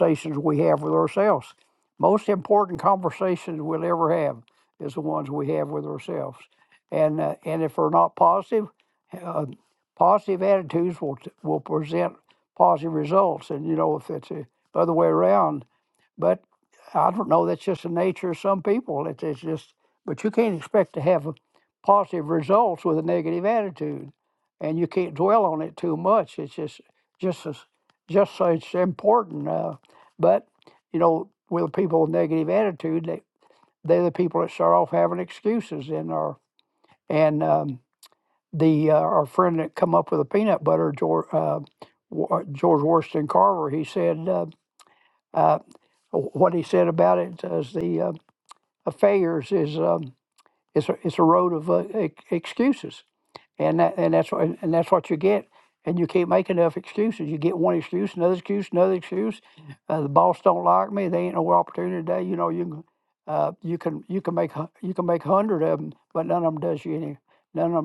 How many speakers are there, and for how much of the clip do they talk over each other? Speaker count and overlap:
1, no overlap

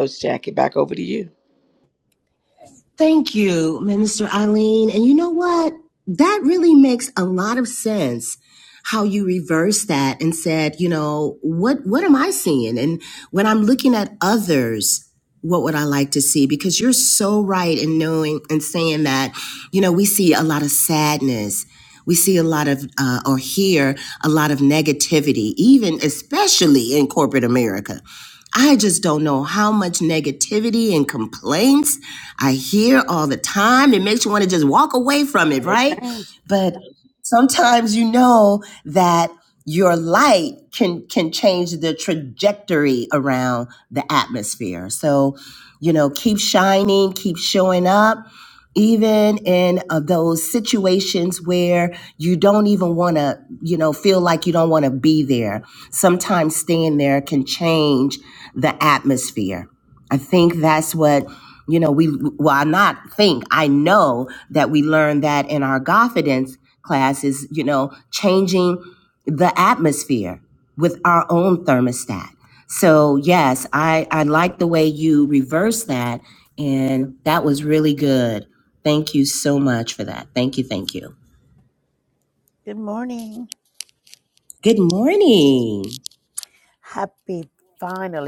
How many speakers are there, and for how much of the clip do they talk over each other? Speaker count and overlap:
3, under 1%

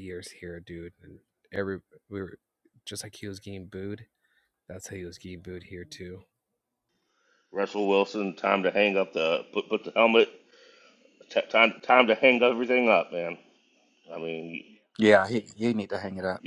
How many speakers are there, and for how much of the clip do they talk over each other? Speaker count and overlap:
3, no overlap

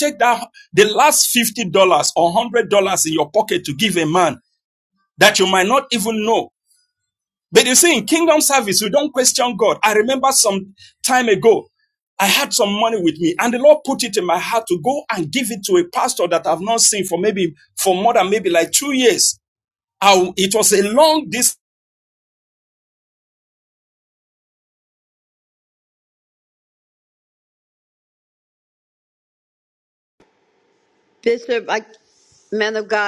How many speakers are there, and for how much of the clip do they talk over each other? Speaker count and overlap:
2, no overlap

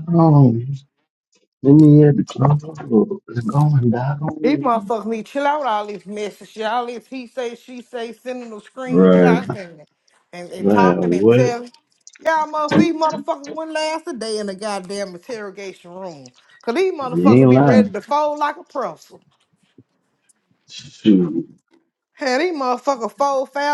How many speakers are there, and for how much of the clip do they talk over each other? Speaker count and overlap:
2, about 10%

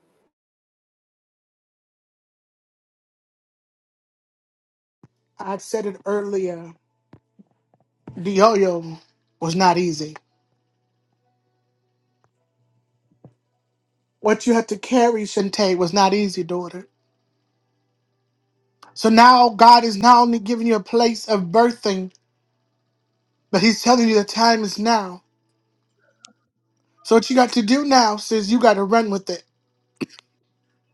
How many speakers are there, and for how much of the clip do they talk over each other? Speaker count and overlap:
1, no overlap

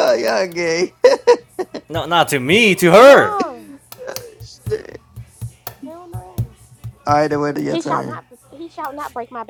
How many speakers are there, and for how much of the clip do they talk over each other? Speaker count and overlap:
3, about 12%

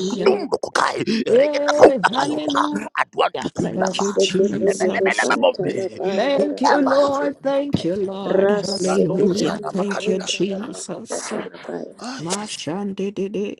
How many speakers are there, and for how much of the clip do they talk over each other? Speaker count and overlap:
3, about 62%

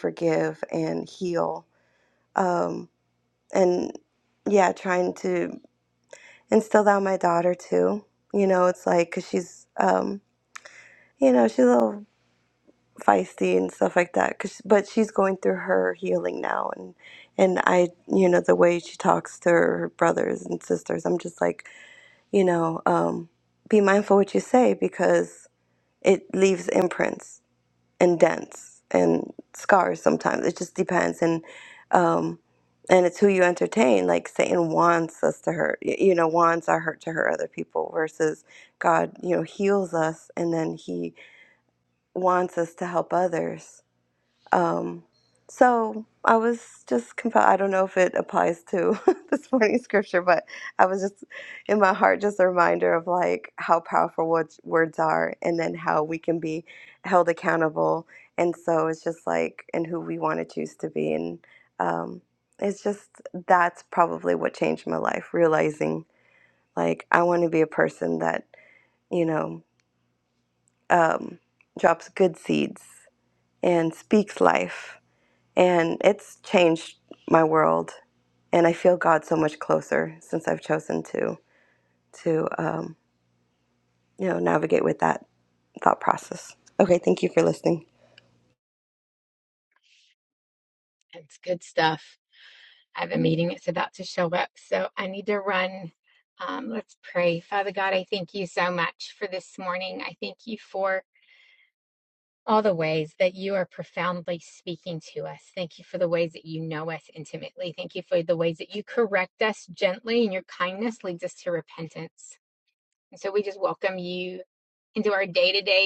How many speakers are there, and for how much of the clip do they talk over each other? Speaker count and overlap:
2, no overlap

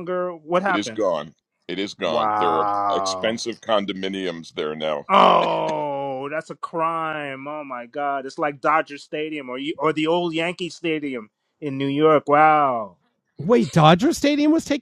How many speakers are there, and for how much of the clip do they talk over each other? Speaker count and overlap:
3, about 9%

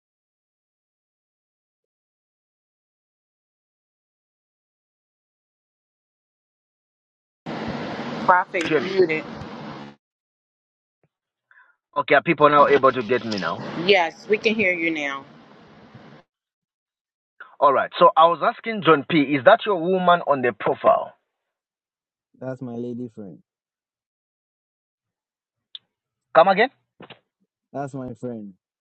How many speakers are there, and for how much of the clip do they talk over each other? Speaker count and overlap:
3, about 1%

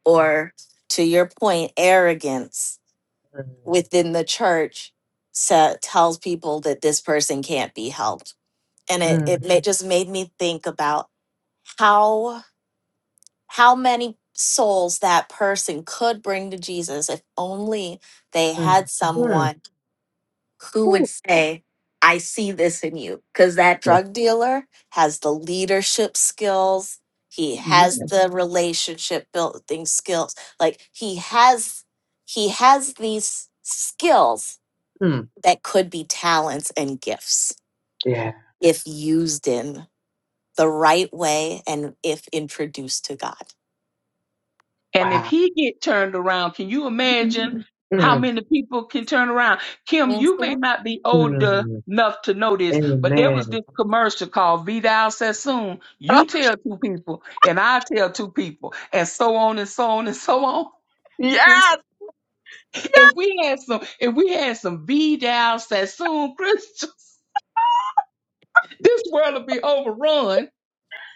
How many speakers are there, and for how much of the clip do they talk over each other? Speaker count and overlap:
3, about 5%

